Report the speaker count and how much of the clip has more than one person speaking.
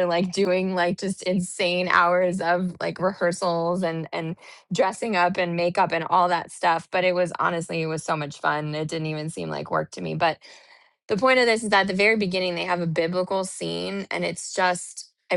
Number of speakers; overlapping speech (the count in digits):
1, no overlap